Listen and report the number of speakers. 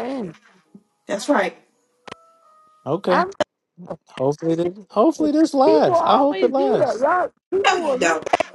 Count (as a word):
three